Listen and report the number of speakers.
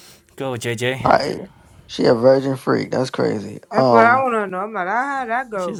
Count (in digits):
3